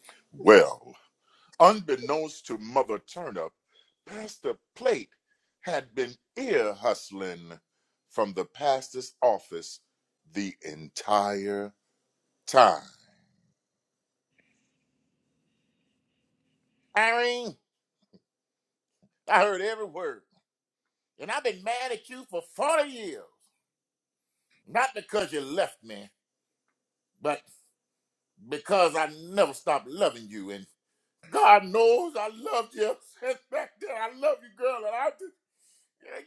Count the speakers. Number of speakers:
one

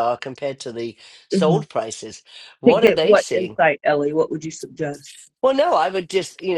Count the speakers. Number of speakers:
two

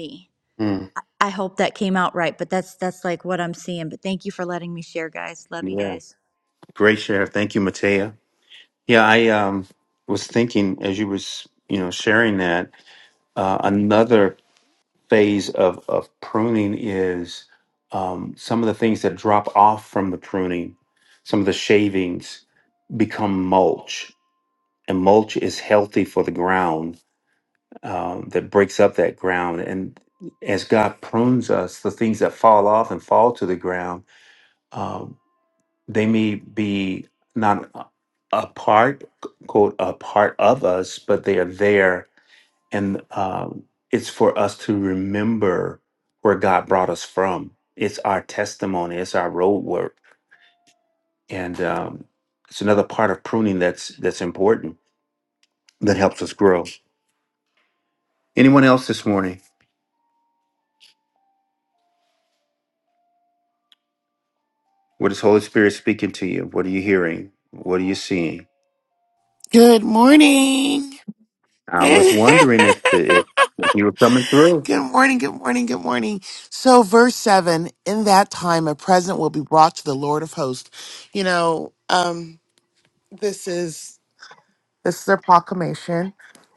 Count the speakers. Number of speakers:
three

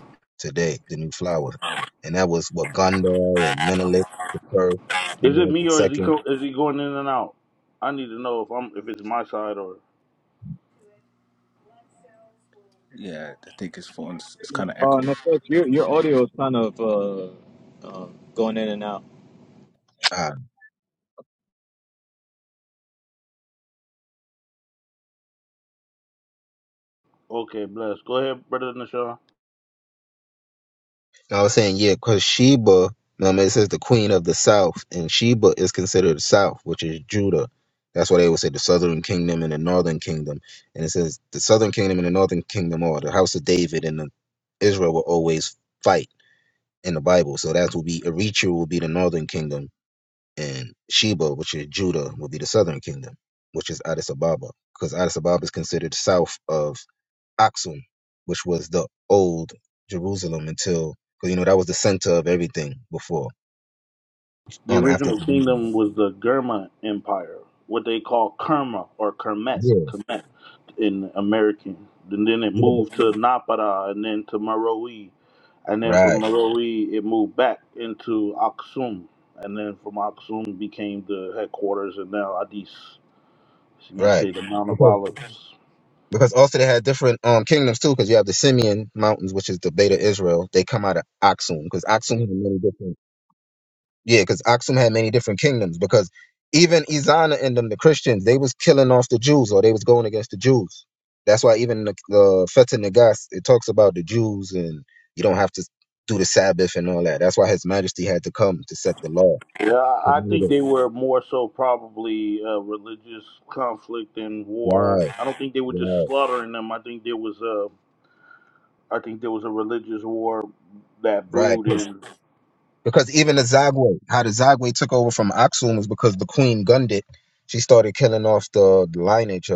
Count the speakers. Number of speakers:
four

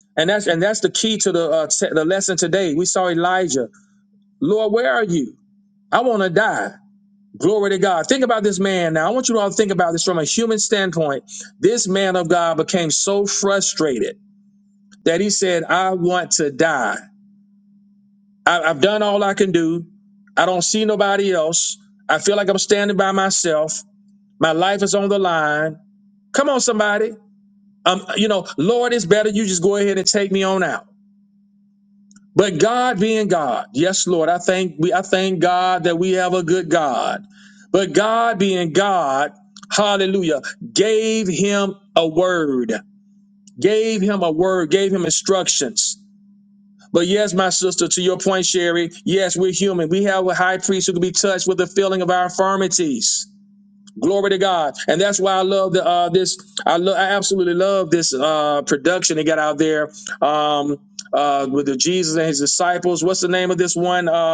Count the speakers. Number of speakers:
one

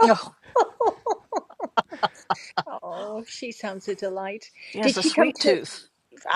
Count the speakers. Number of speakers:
two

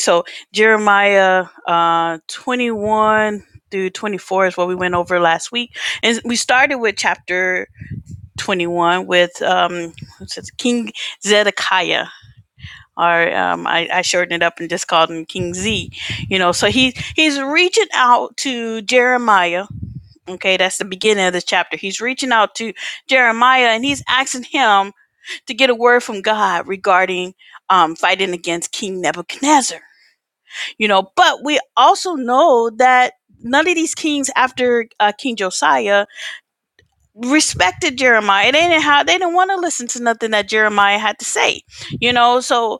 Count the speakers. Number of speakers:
one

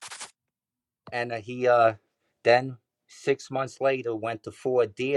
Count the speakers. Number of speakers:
one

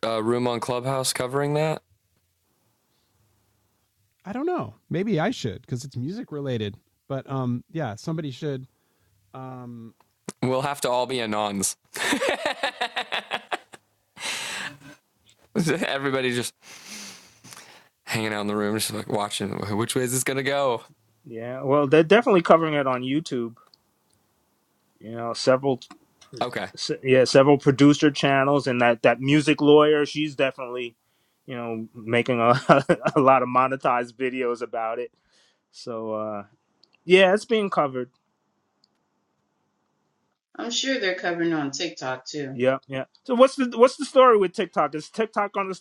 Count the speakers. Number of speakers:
four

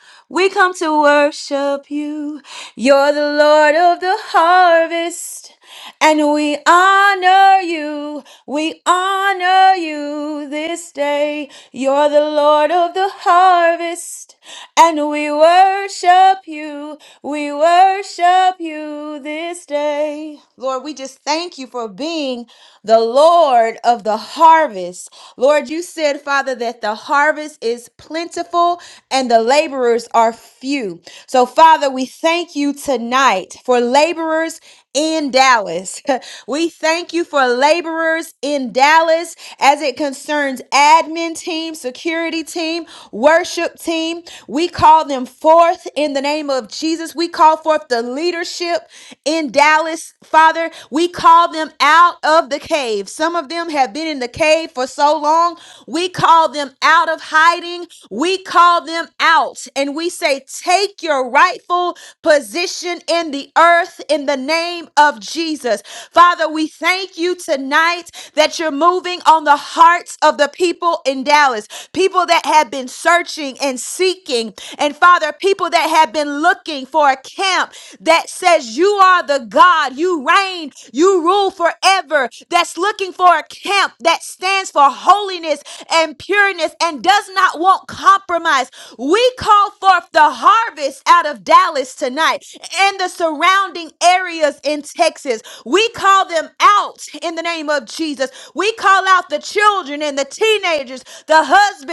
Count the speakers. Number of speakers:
one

